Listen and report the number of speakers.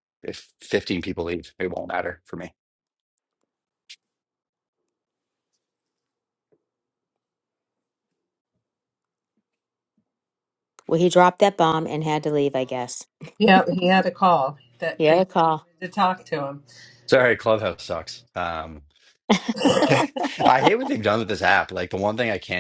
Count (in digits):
3